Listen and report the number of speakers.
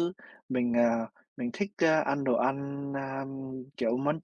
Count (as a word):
one